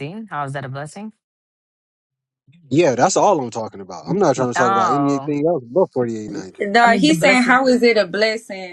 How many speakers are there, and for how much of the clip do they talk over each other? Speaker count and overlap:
three, about 18%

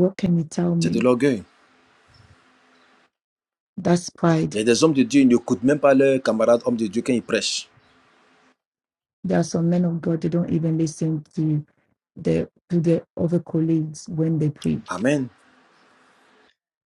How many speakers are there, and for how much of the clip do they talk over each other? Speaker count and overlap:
two, about 2%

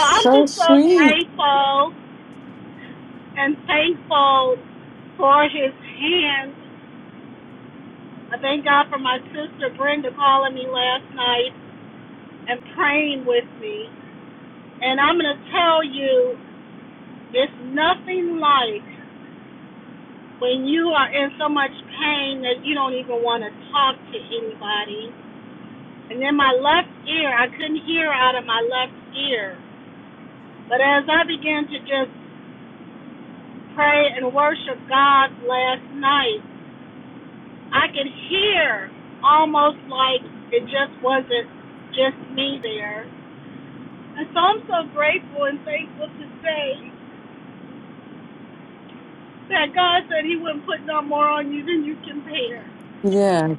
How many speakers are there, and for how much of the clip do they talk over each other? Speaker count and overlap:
two, about 2%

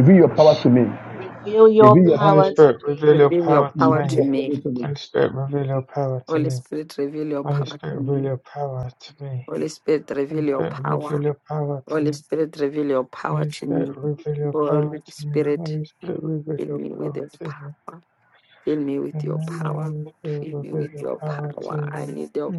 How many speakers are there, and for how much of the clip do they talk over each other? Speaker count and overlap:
four, about 47%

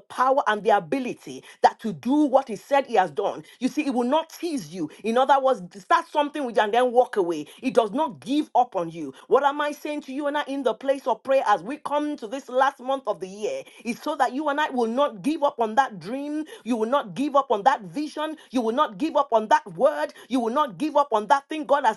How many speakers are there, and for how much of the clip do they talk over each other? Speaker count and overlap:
one, no overlap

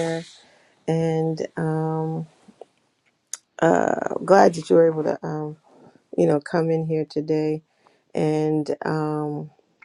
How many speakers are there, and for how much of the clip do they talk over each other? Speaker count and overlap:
one, no overlap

